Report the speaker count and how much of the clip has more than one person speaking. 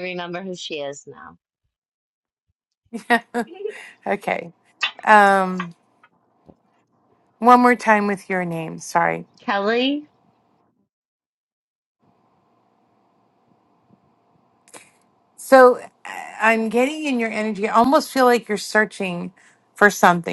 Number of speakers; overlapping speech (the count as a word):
two, no overlap